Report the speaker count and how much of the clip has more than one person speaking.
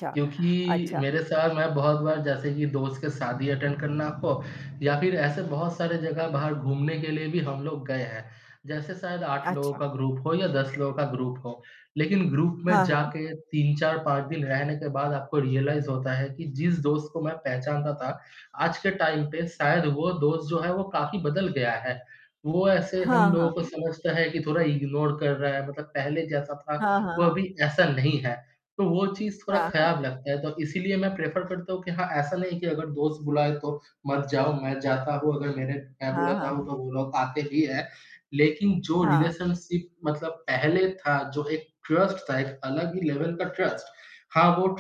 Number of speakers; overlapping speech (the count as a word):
two, about 7%